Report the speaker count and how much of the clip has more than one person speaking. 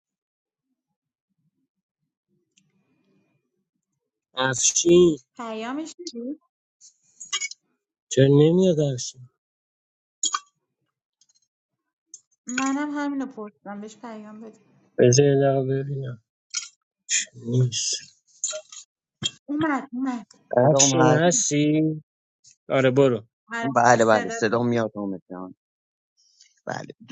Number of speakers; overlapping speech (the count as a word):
three, about 6%